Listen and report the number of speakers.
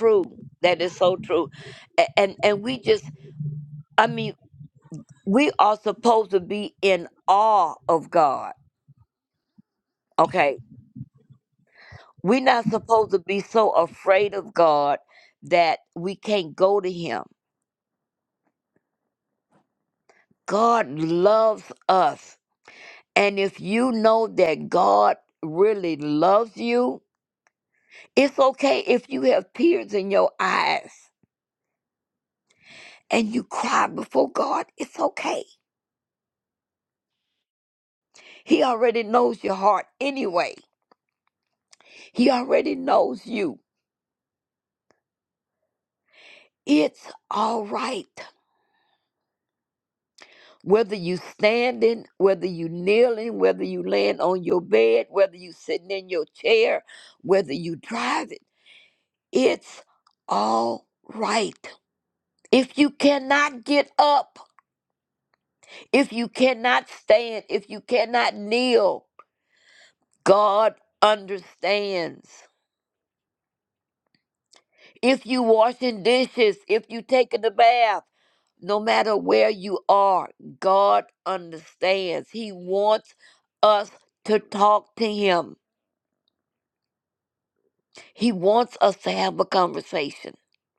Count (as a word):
one